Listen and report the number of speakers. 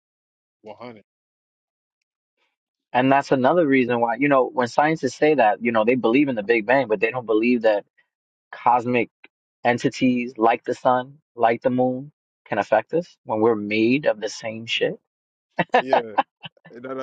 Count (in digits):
2